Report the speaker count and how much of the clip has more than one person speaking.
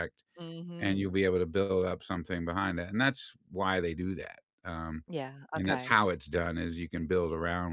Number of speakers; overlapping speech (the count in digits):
2, about 8%